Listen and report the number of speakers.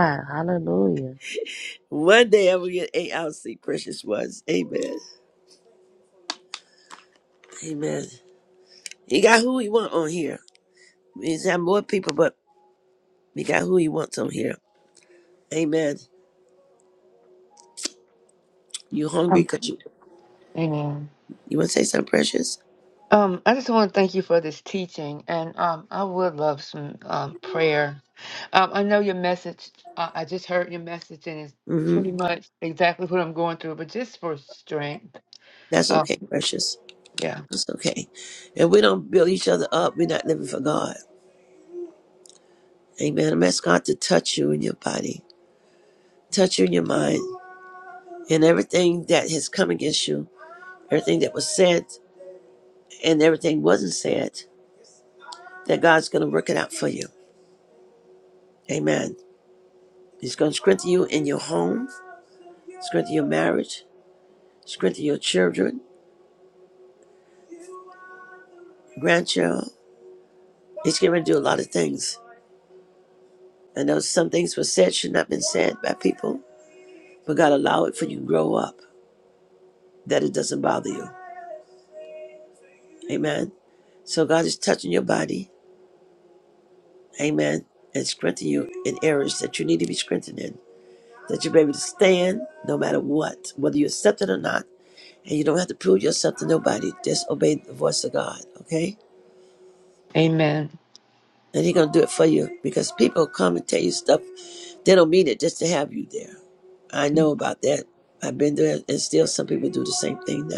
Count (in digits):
3